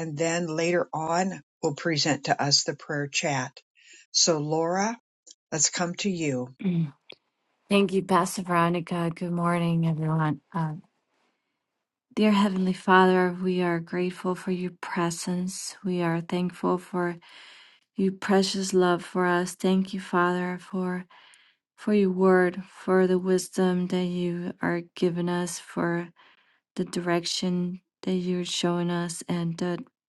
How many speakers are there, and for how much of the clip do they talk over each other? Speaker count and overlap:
two, no overlap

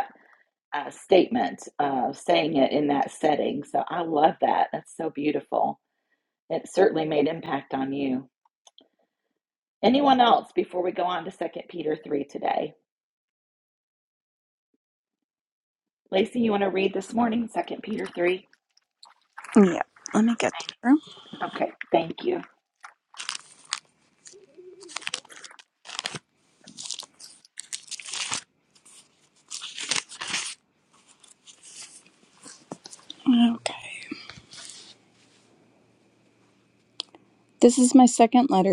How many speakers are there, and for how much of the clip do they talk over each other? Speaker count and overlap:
two, no overlap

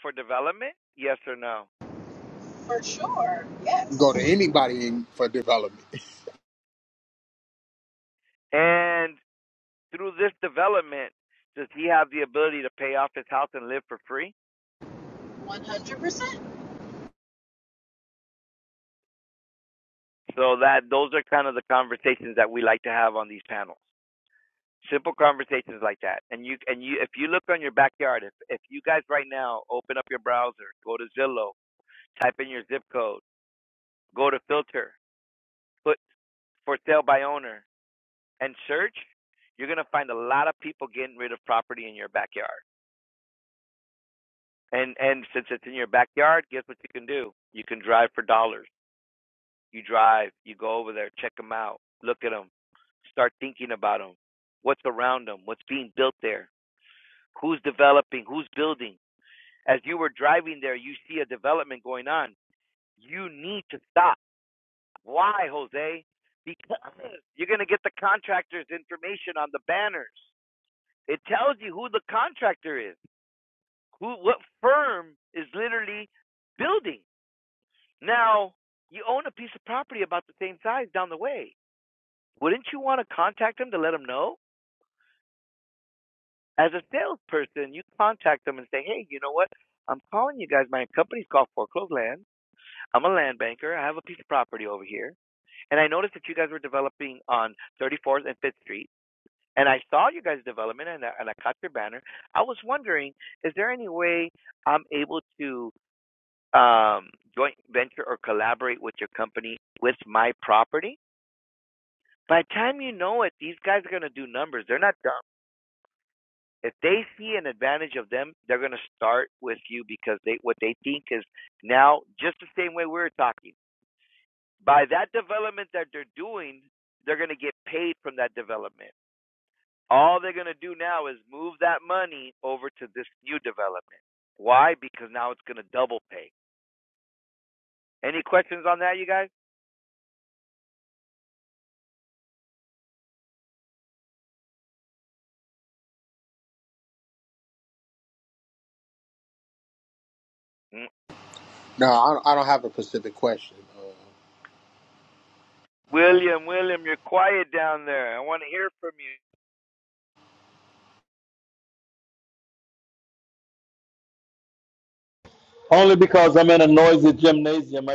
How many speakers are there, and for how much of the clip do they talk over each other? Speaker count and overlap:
four, under 1%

